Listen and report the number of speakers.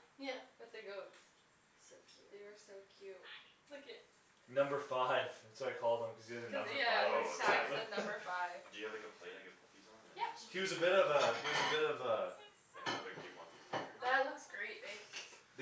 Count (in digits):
4